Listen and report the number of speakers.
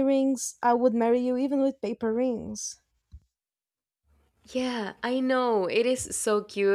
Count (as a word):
two